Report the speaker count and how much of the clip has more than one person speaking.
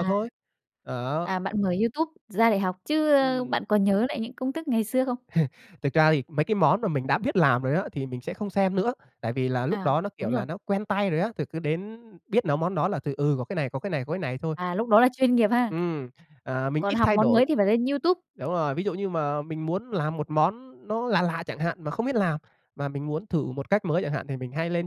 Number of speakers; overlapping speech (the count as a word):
two, about 8%